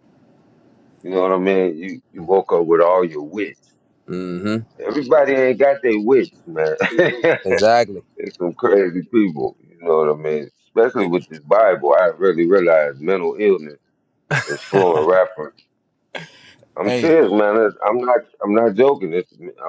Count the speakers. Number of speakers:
2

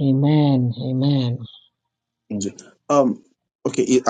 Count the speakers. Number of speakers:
2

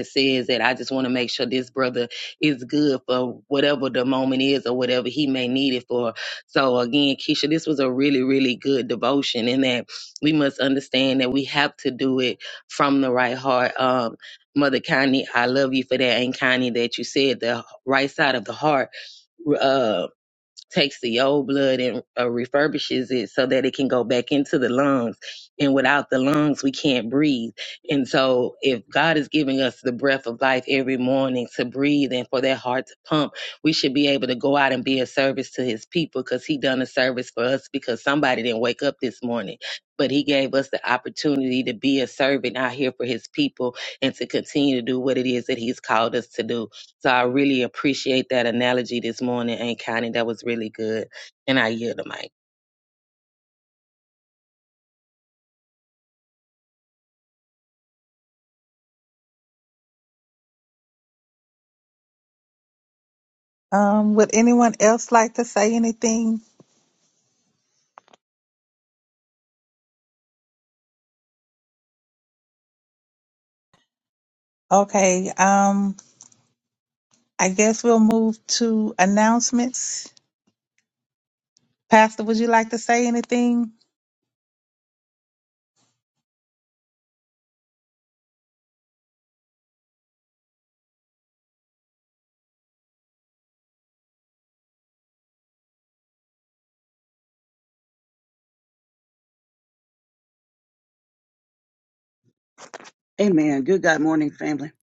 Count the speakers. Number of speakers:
3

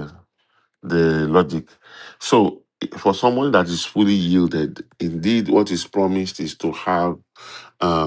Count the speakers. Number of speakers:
1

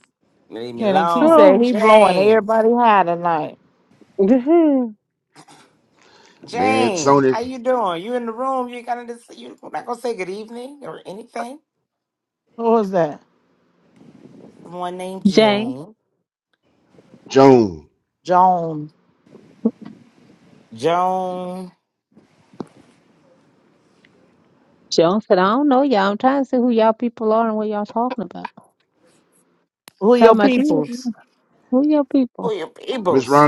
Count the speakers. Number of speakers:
4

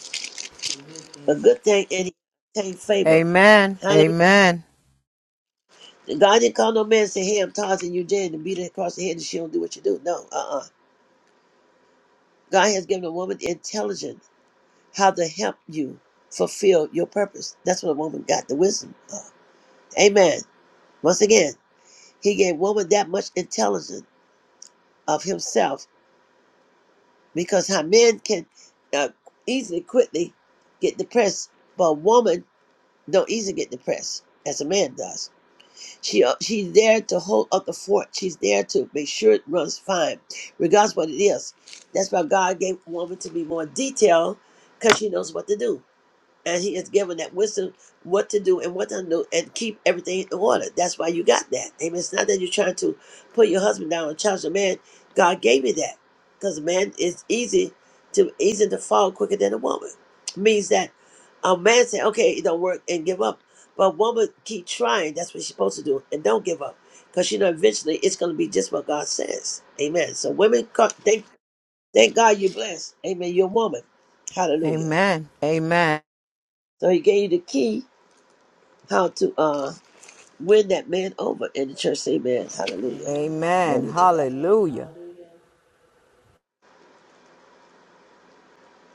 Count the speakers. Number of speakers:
3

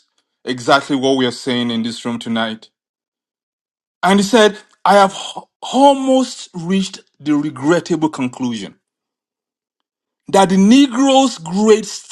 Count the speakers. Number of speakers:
1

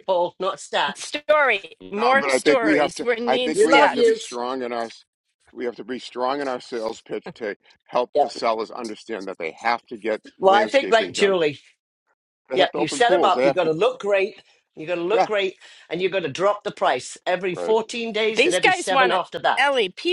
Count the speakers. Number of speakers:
3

